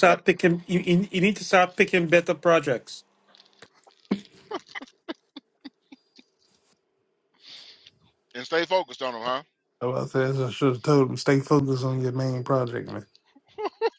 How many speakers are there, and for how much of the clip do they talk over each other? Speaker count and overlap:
3, about 1%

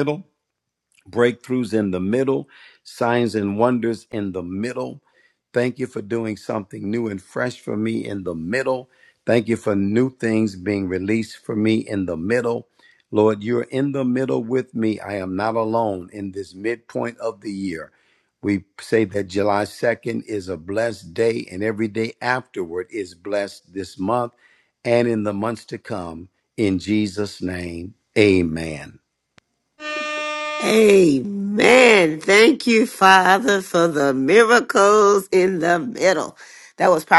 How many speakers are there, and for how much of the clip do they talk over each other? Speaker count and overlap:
2, no overlap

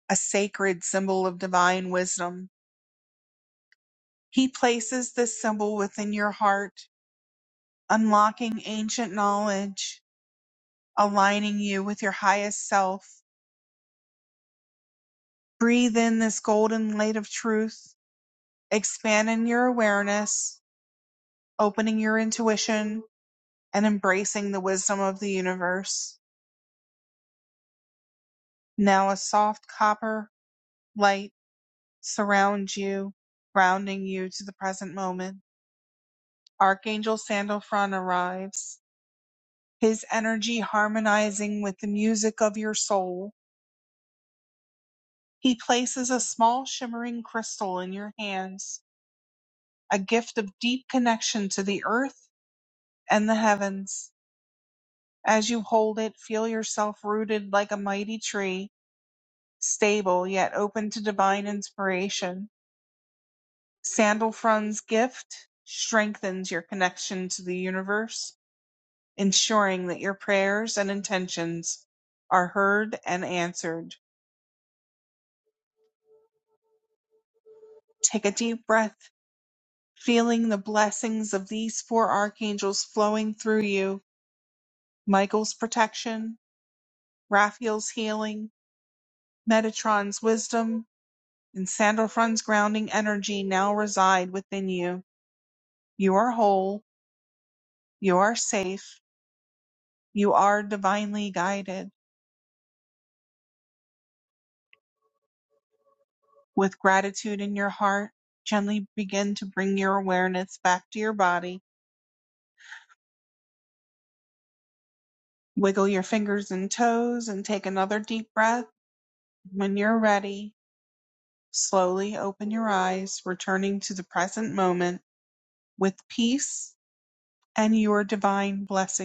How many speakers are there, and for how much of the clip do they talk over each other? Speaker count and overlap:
1, no overlap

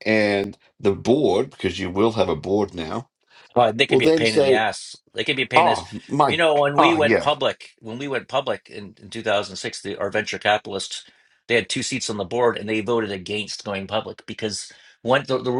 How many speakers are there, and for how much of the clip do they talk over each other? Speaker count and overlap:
2, about 11%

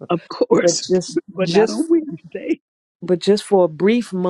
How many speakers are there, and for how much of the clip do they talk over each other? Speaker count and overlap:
2, about 18%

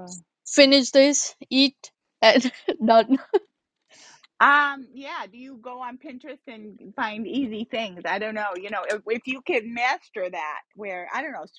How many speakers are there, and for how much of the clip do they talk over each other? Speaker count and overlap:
2, no overlap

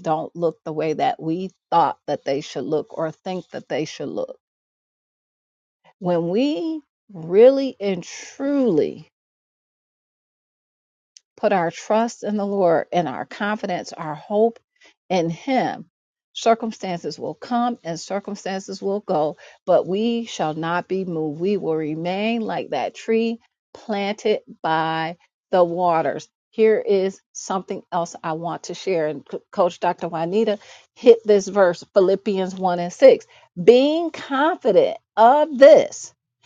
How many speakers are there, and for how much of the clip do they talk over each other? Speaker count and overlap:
1, no overlap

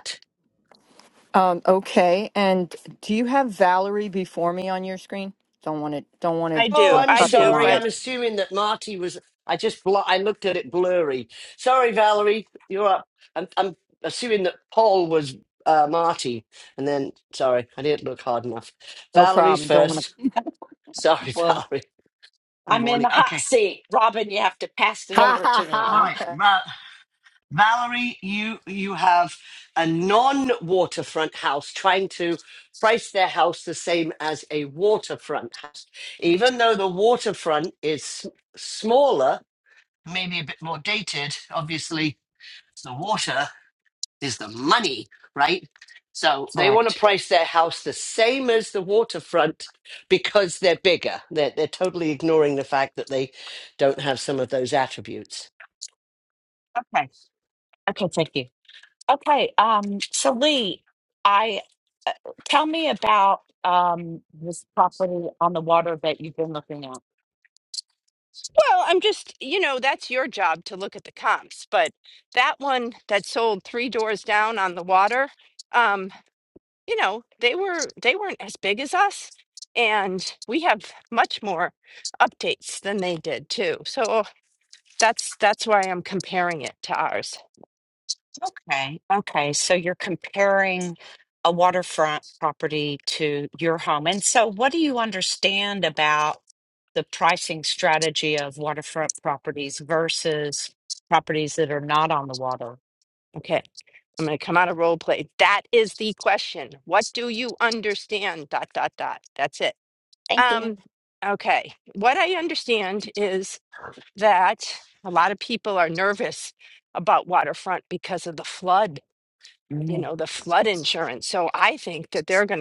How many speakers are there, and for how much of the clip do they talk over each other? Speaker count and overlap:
4, about 4%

